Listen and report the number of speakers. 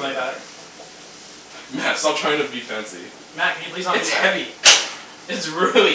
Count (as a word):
three